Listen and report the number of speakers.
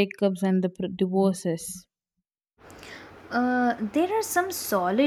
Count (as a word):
two